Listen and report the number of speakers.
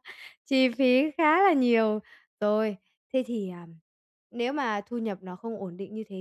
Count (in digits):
1